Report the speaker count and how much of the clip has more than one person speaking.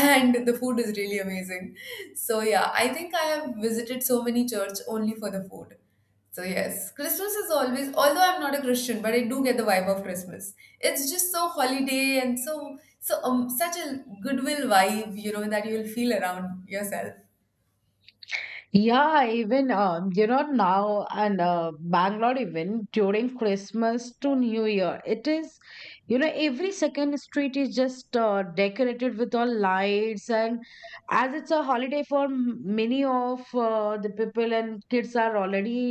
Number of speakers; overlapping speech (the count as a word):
two, no overlap